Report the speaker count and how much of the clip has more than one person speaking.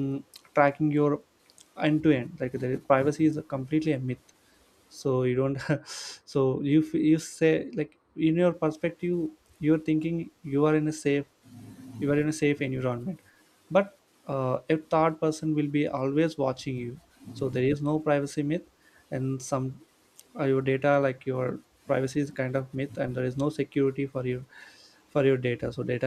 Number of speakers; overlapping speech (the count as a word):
one, no overlap